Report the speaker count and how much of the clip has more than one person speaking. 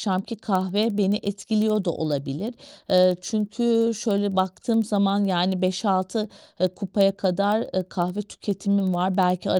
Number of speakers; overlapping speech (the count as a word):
one, no overlap